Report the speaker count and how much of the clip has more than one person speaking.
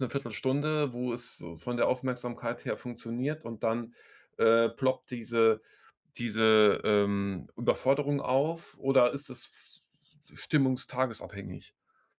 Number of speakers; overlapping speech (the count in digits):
1, no overlap